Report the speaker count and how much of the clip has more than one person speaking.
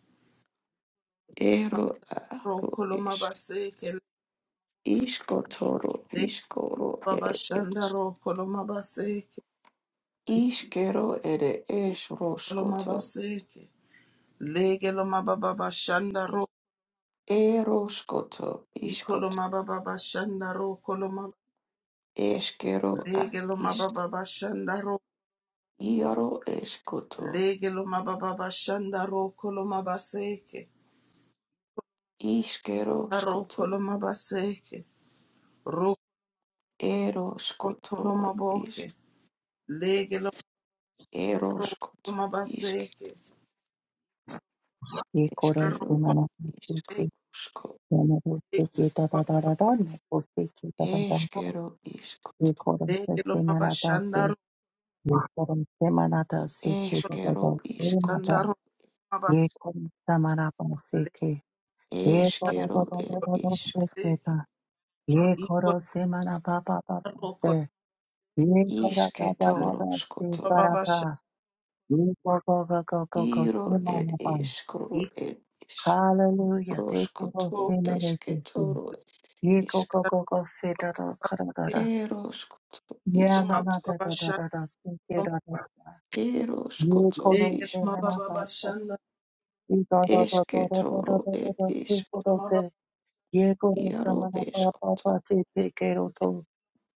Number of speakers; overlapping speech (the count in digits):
3, about 27%